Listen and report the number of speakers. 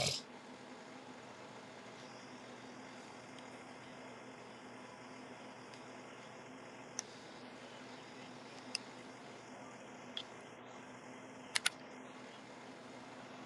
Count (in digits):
0